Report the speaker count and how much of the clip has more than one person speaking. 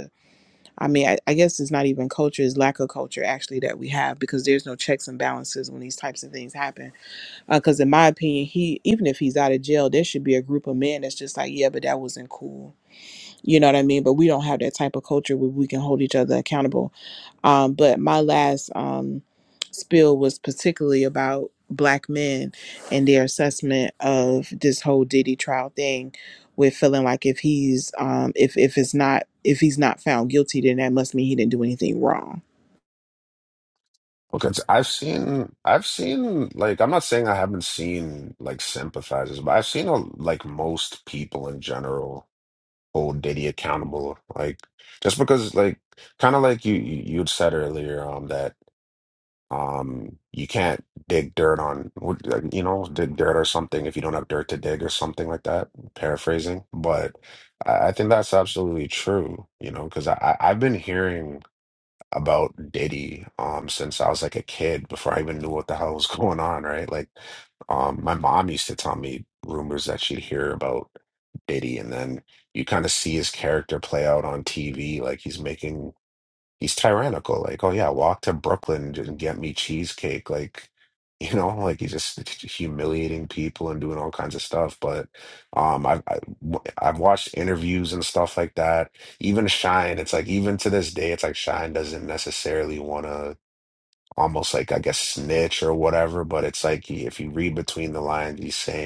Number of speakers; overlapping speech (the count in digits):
2, no overlap